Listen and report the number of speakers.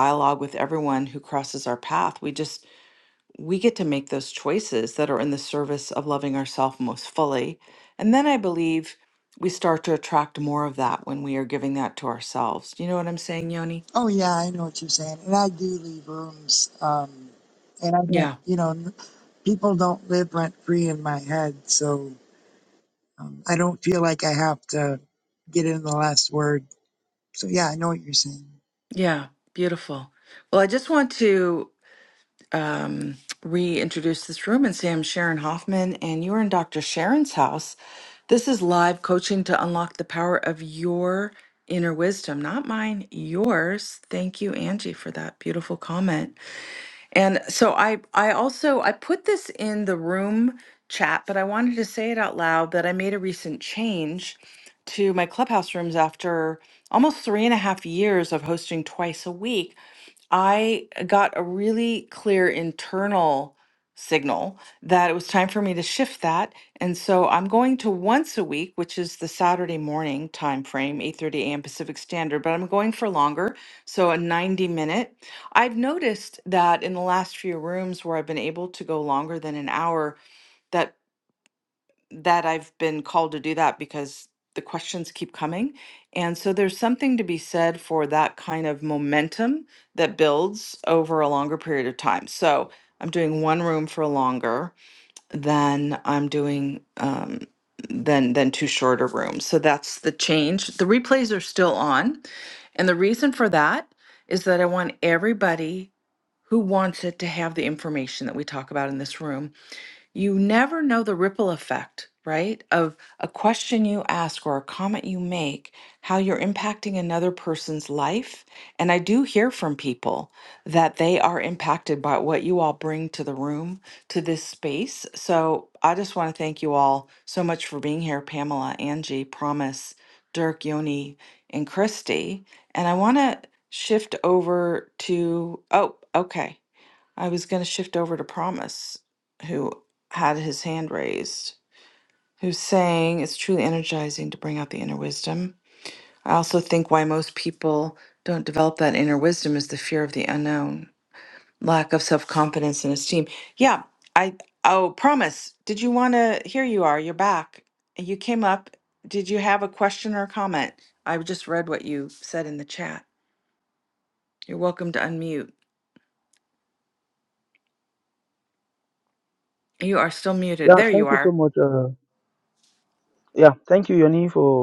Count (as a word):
three